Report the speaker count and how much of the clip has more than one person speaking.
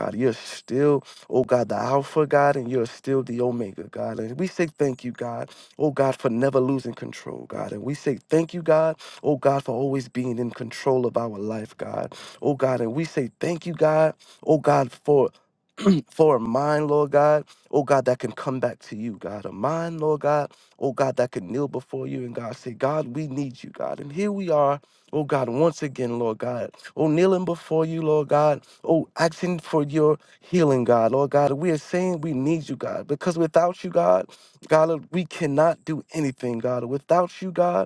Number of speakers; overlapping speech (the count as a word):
one, no overlap